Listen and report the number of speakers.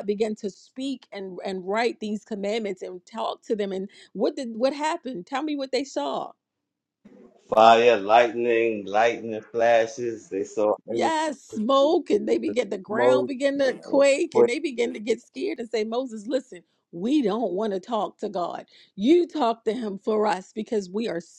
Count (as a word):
two